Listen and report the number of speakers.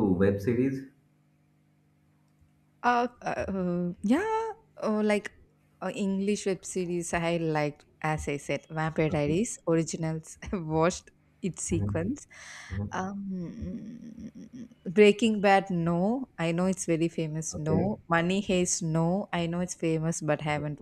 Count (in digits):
2